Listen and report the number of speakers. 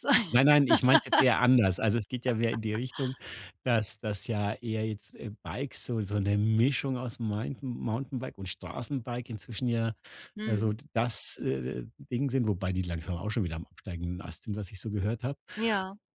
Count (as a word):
two